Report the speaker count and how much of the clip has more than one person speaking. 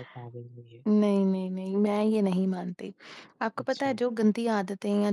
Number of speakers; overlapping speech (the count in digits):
2, about 8%